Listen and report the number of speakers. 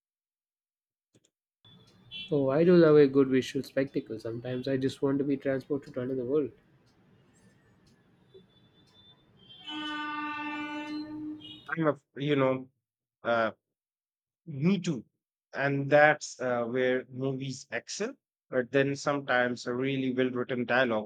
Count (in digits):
2